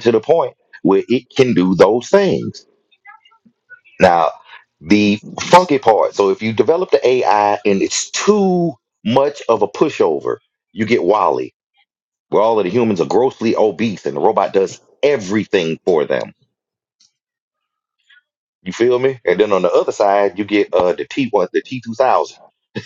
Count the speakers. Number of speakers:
1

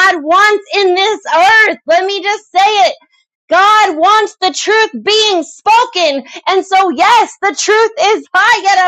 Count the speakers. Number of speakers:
1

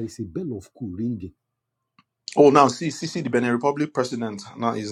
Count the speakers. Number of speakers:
2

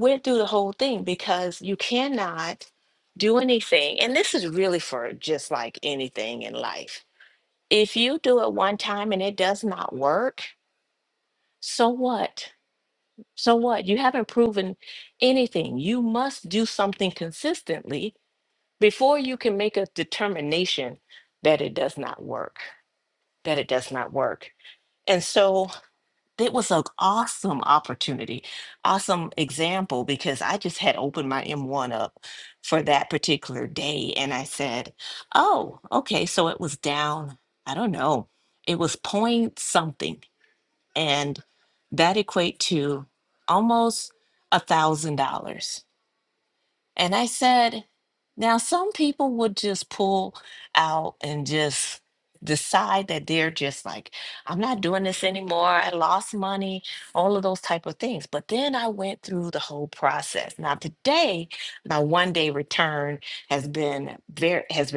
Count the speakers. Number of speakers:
1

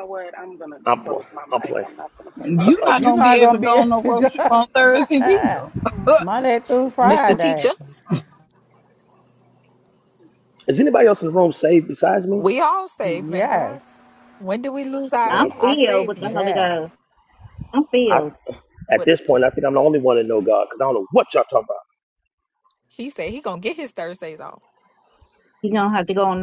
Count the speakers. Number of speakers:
6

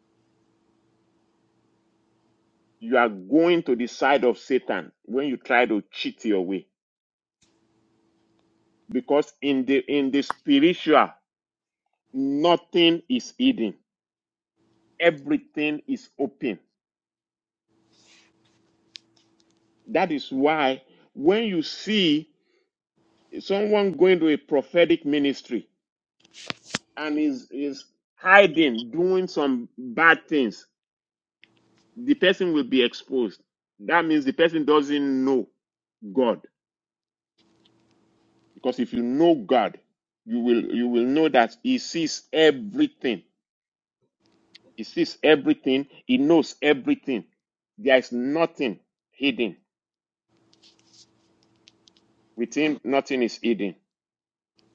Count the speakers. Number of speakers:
1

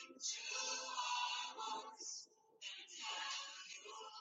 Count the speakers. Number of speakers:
0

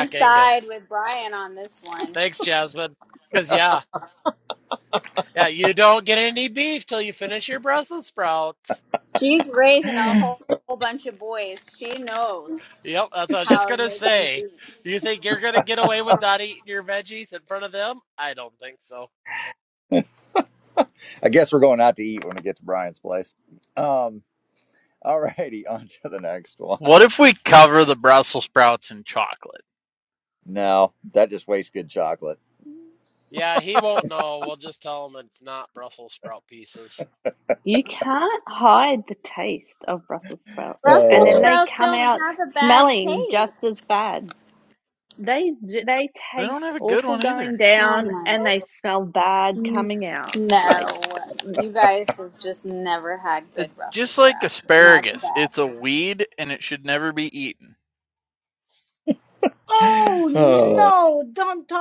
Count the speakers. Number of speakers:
6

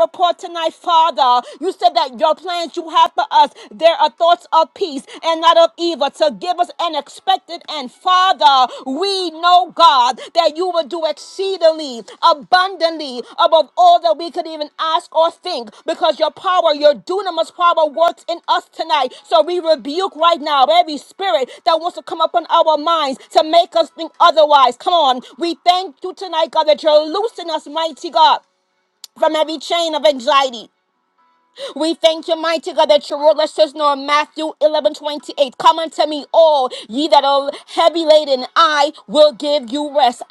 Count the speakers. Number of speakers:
1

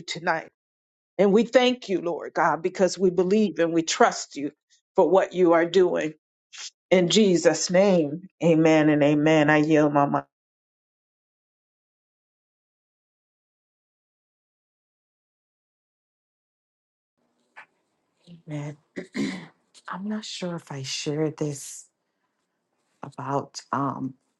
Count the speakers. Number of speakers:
2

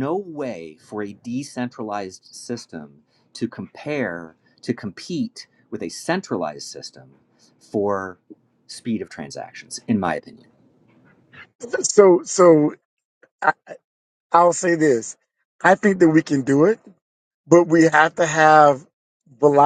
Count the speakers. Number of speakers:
2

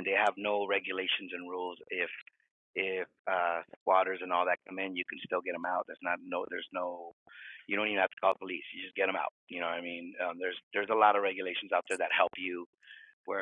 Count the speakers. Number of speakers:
1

